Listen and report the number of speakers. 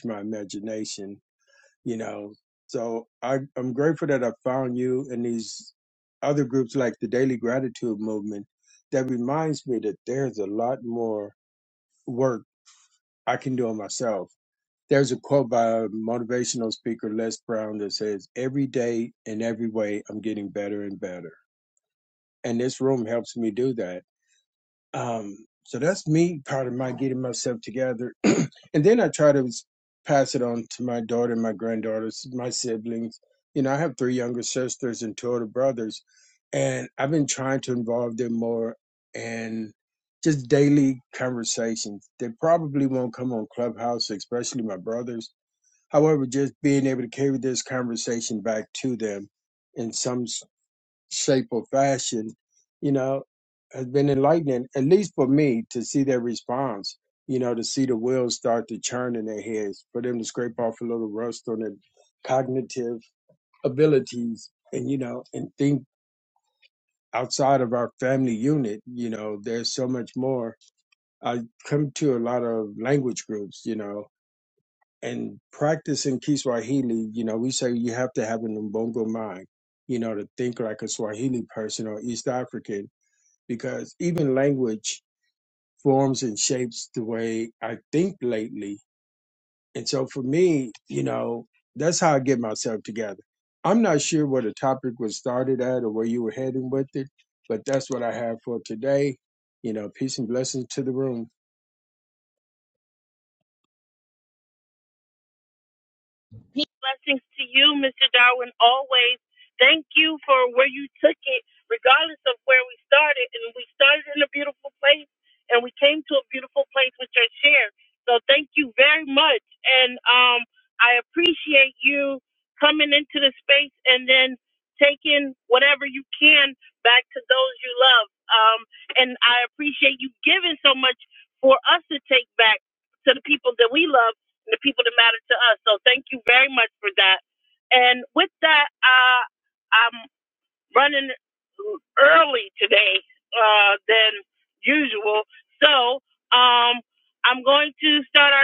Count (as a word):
two